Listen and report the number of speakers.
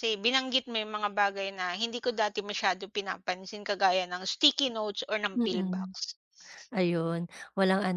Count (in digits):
2